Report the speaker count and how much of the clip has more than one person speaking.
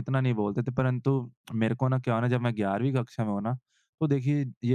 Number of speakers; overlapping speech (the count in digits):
1, no overlap